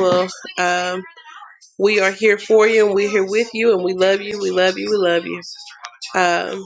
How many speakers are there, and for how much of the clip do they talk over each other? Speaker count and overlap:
1, no overlap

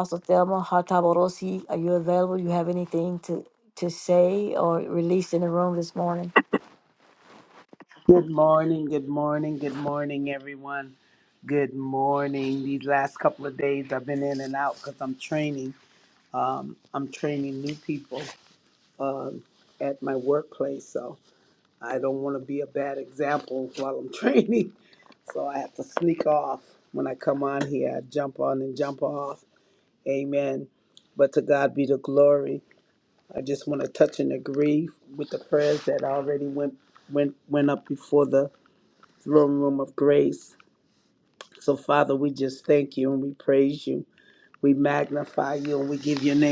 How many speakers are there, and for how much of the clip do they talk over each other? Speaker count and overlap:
2, no overlap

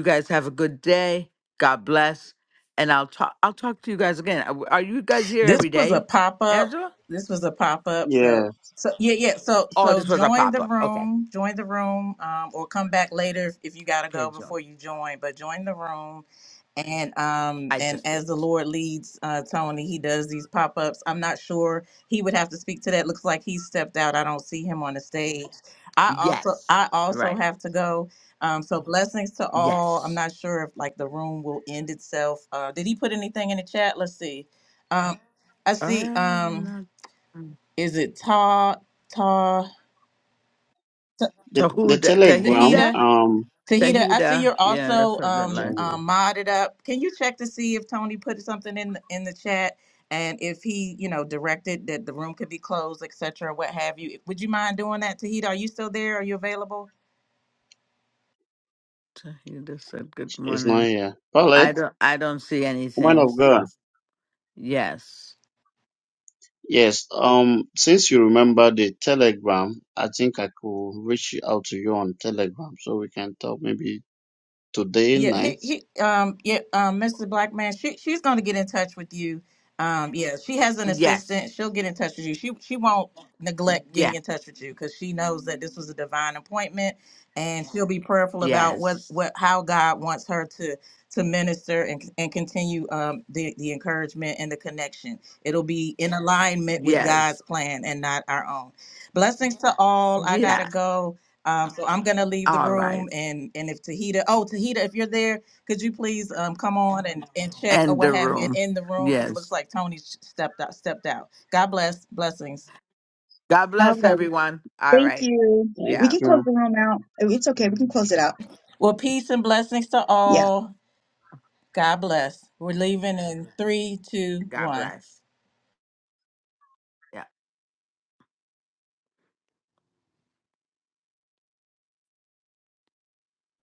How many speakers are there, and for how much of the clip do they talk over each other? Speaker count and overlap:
4, about 12%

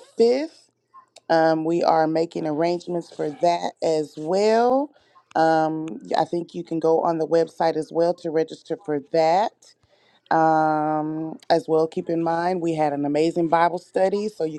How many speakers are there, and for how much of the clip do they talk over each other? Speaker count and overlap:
1, no overlap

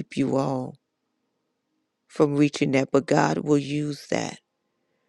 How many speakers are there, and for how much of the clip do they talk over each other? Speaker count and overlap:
1, no overlap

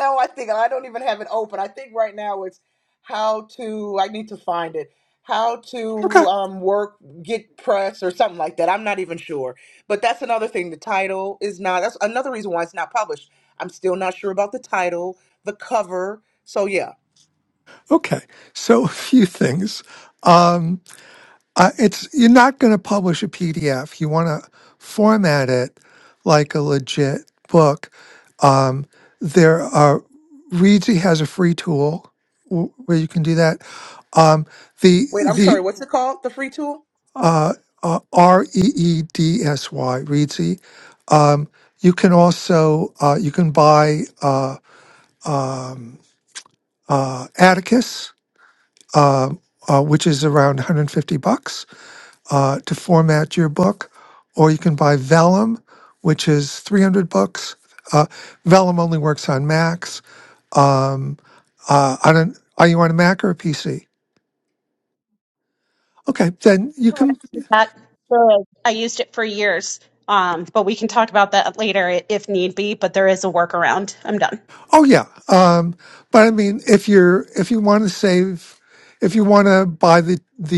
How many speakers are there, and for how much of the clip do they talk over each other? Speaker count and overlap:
3, about 1%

